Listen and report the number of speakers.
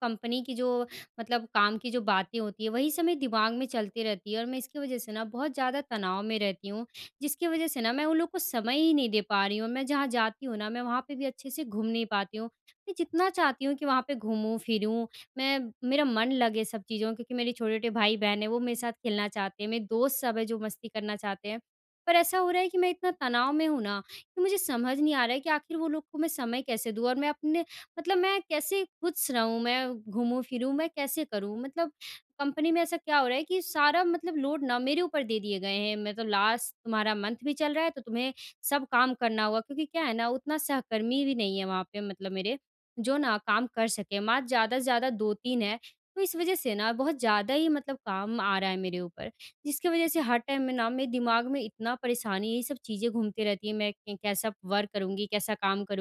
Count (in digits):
1